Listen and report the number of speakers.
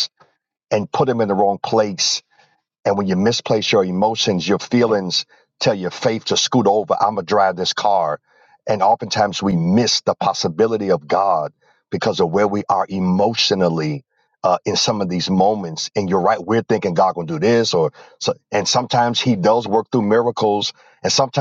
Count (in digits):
1